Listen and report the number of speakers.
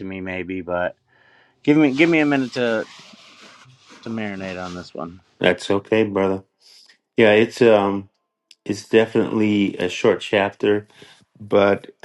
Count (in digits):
2